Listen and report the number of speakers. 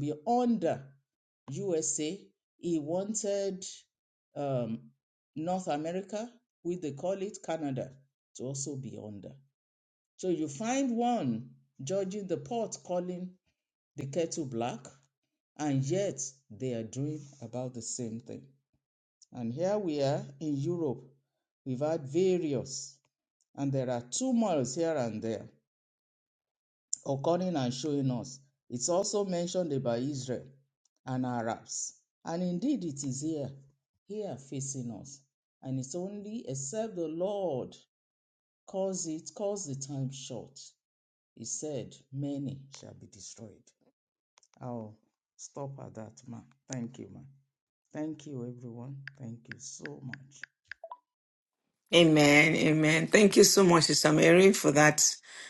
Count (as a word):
two